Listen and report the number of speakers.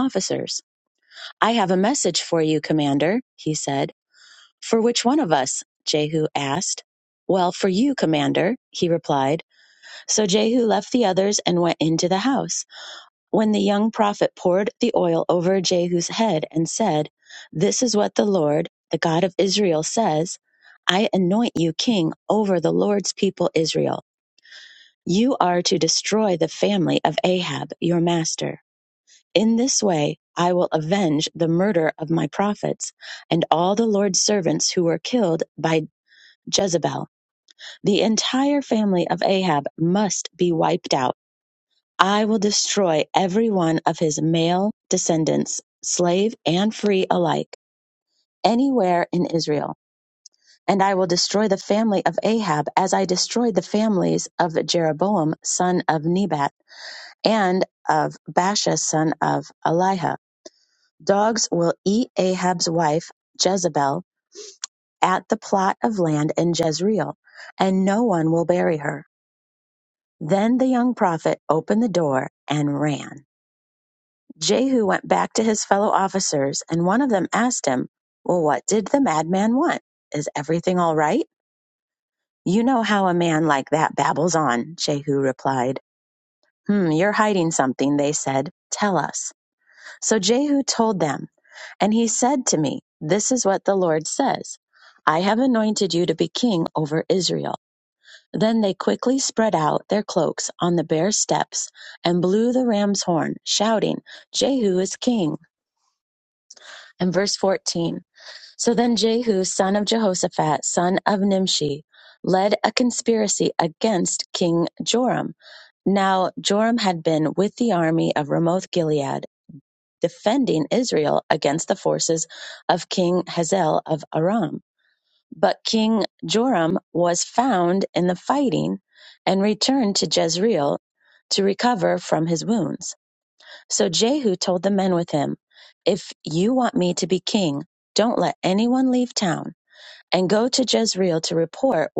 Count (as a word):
one